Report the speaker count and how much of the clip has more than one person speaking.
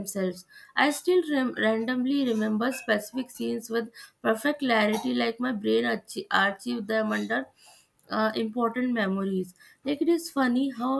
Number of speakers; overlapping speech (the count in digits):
1, no overlap